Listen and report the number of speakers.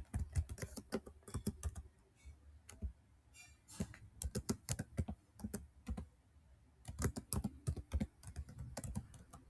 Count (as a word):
zero